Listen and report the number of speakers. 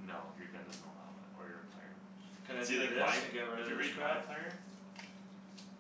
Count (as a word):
two